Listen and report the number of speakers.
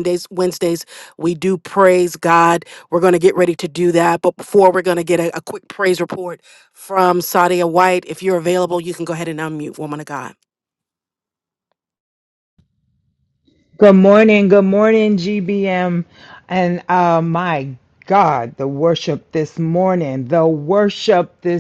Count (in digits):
2